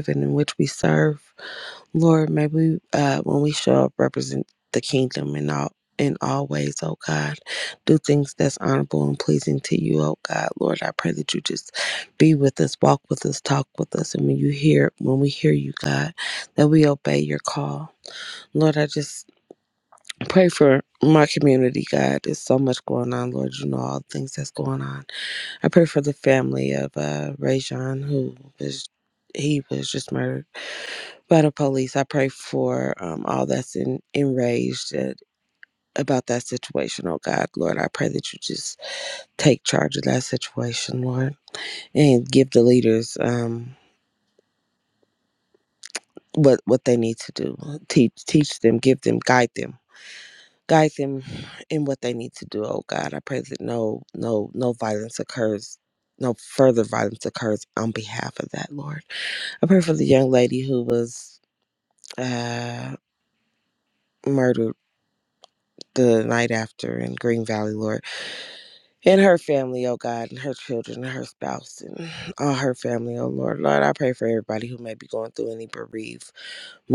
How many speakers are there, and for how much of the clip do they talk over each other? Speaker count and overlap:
one, no overlap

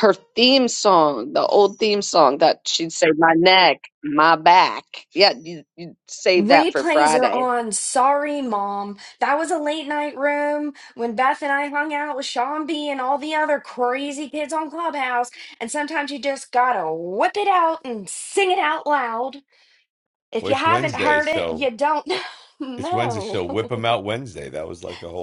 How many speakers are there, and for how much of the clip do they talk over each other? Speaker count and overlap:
three, about 11%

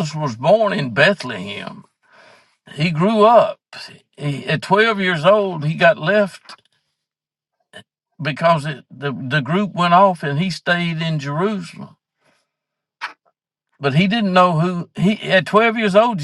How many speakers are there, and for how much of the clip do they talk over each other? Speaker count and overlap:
one, no overlap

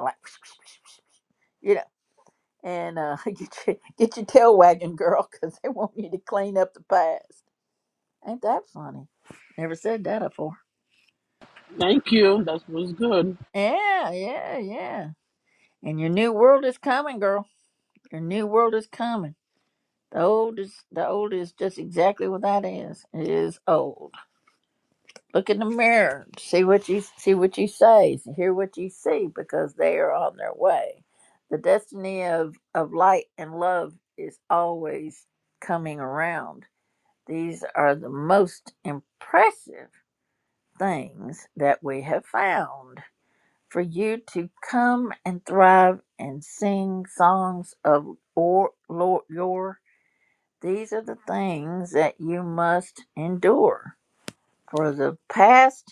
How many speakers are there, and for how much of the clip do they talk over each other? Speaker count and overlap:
two, no overlap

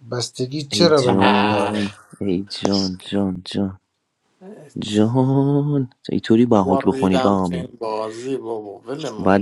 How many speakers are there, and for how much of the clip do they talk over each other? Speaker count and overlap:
three, about 24%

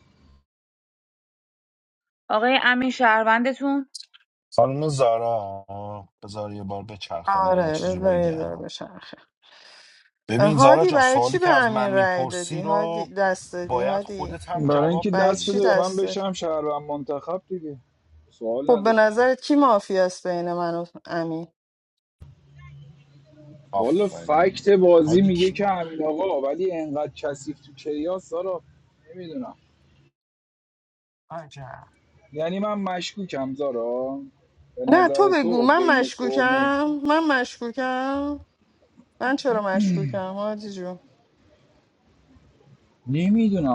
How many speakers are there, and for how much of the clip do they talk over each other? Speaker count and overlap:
four, about 23%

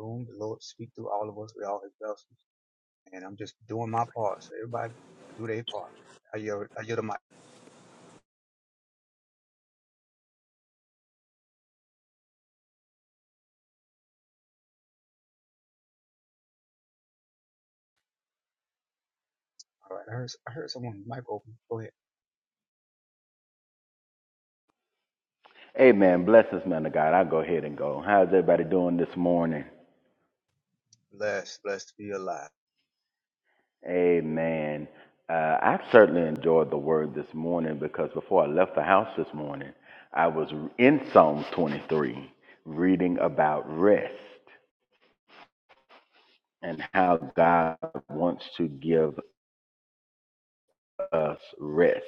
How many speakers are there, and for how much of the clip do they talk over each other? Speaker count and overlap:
two, no overlap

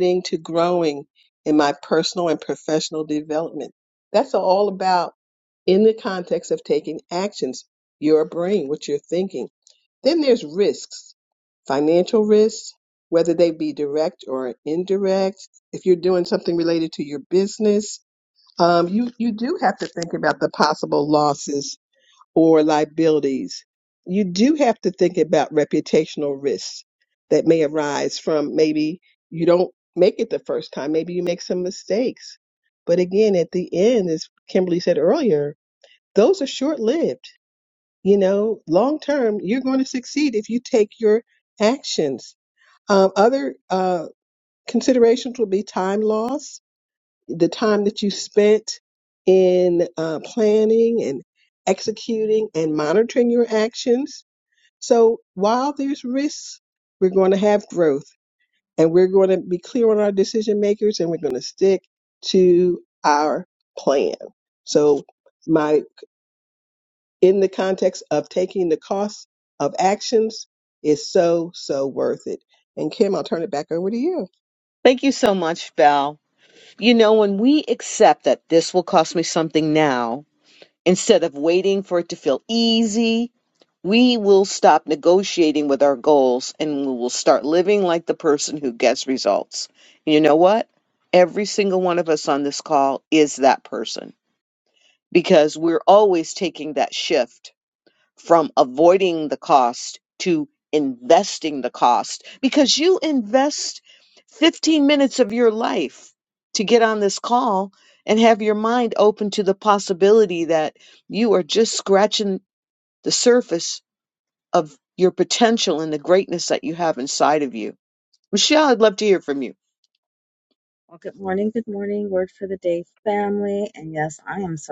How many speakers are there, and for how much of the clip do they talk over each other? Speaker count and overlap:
three, no overlap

